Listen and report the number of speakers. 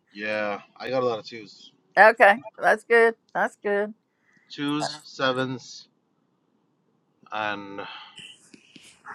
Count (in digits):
2